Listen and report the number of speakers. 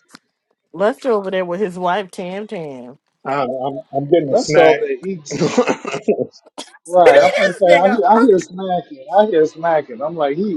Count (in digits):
3